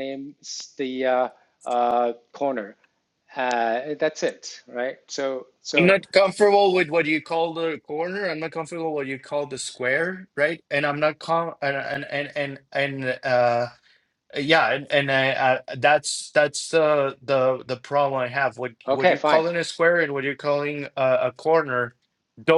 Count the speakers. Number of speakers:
2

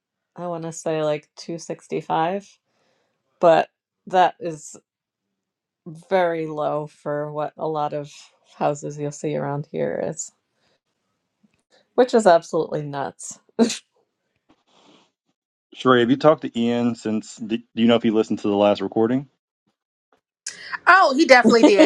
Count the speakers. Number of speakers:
3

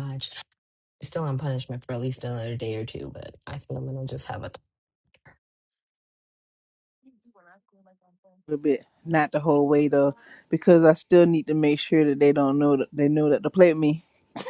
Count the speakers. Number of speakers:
2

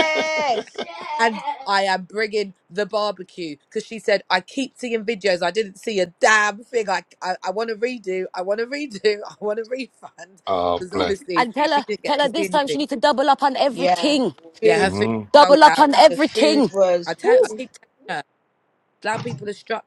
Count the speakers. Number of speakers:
4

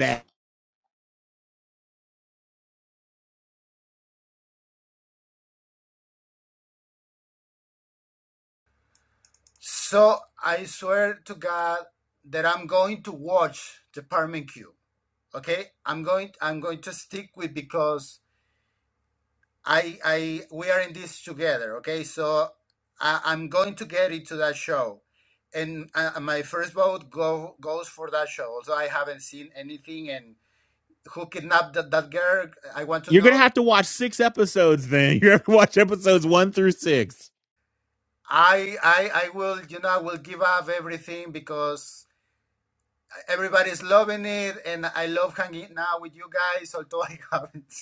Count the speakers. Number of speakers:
2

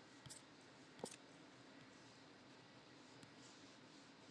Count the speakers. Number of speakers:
0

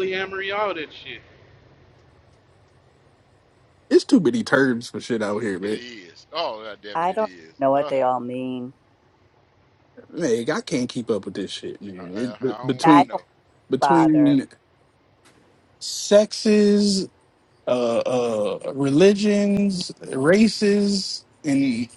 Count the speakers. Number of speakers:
4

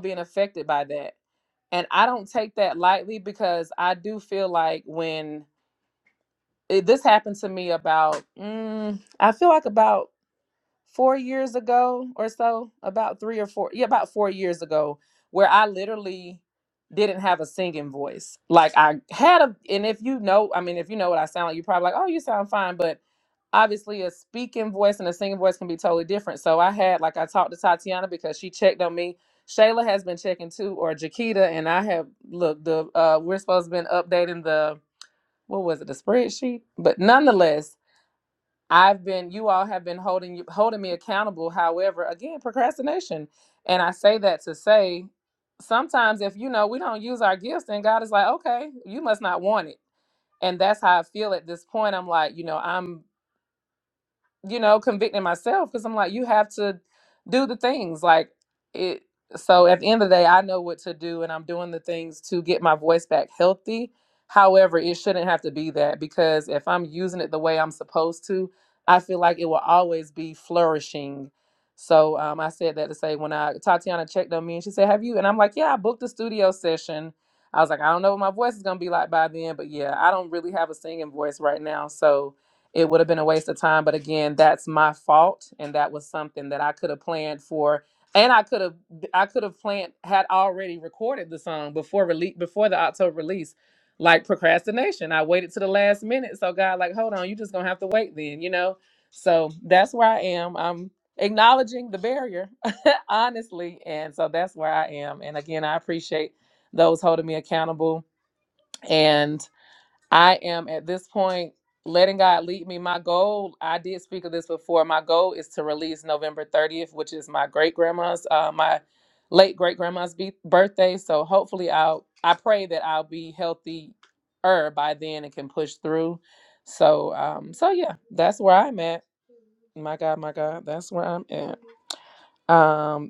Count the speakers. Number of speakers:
1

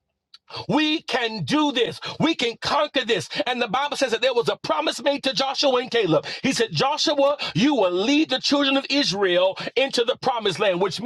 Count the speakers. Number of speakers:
1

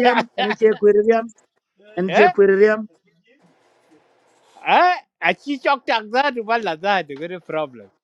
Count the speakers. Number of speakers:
2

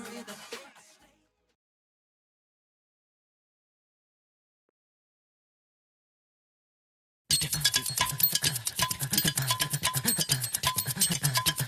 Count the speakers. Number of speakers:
0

